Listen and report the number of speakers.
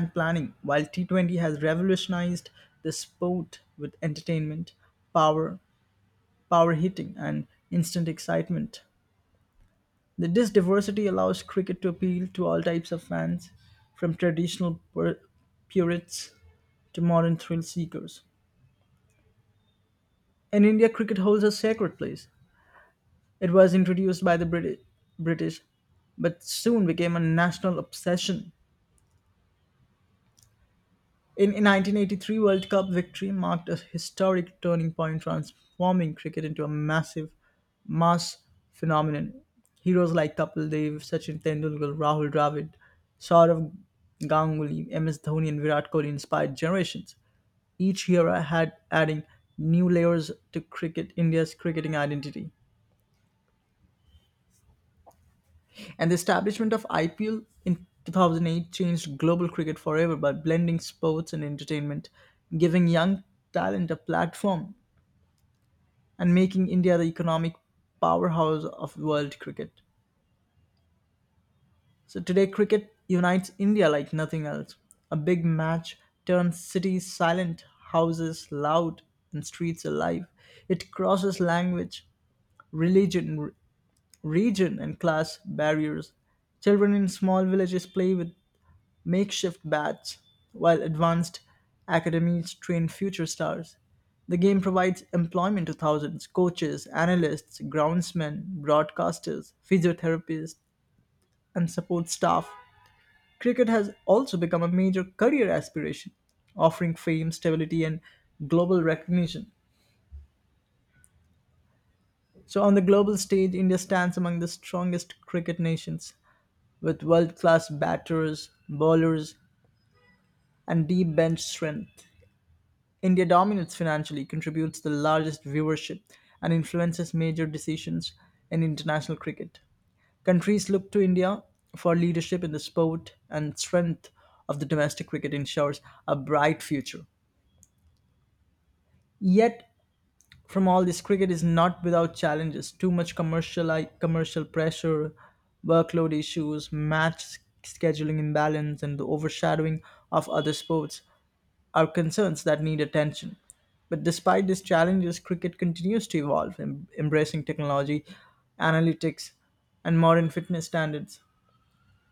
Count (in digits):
1